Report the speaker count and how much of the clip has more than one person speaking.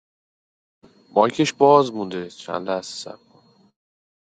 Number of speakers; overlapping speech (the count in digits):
1, no overlap